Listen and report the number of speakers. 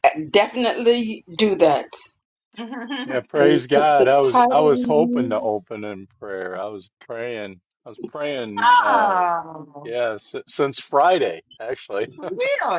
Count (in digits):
3